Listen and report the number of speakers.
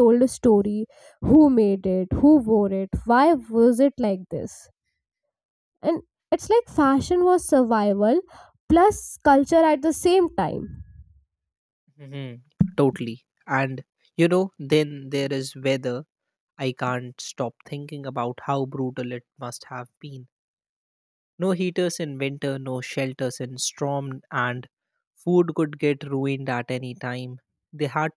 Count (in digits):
2